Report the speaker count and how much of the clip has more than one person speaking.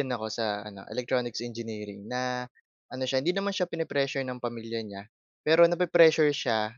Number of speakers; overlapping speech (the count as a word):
one, no overlap